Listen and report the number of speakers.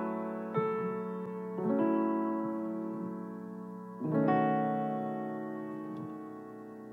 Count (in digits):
0